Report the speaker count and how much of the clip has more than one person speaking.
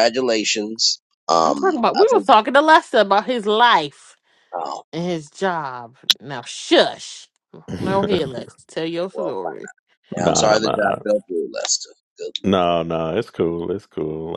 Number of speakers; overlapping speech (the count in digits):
3, about 14%